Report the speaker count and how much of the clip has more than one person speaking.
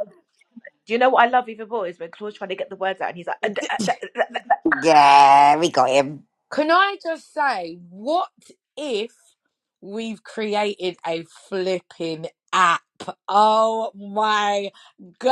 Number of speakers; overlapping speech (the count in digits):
3, no overlap